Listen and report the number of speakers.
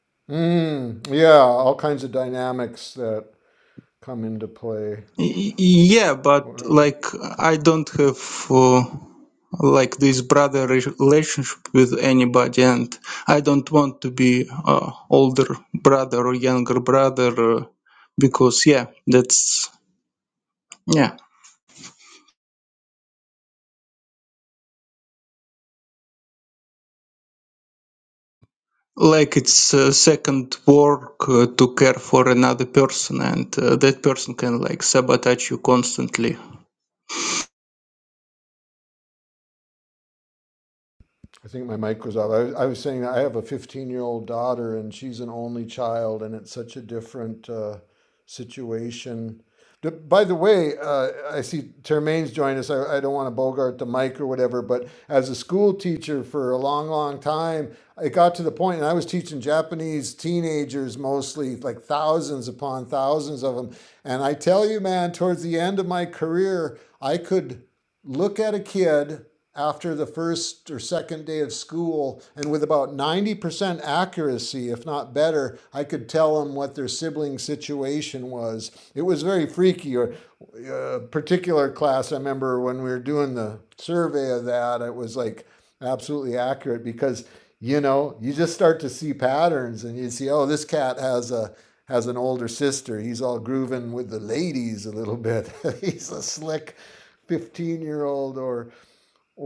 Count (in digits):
2